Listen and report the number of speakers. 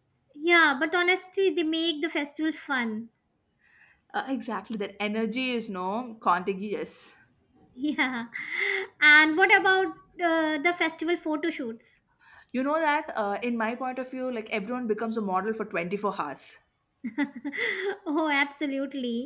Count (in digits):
2